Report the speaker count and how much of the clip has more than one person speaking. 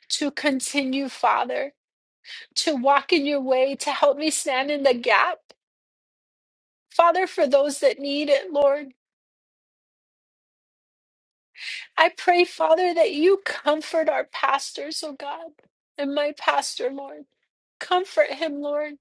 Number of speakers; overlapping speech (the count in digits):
1, no overlap